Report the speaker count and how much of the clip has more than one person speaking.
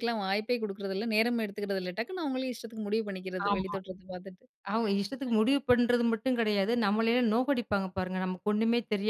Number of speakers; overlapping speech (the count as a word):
two, about 4%